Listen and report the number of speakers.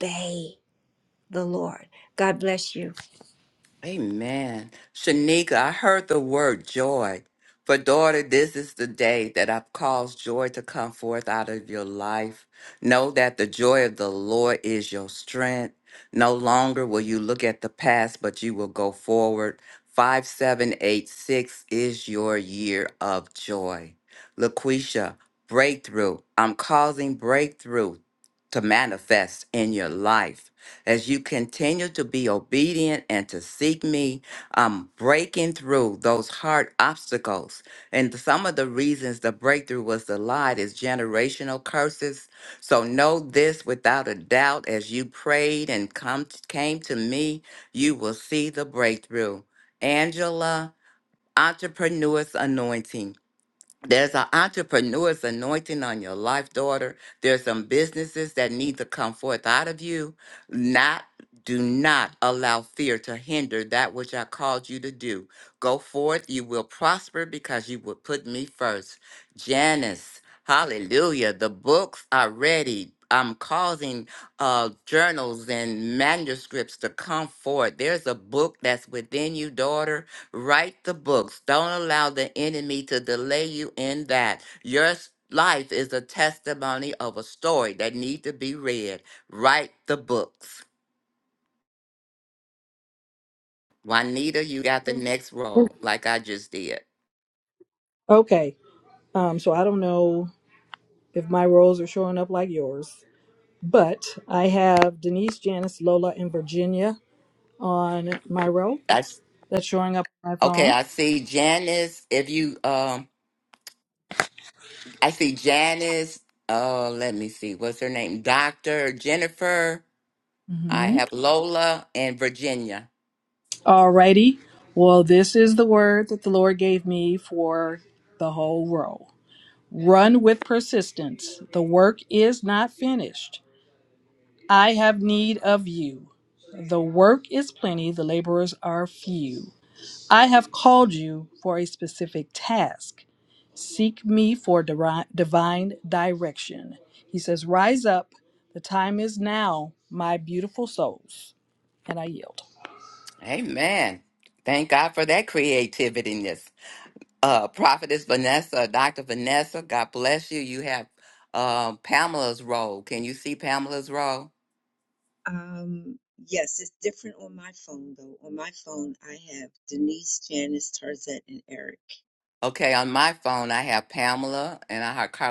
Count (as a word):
four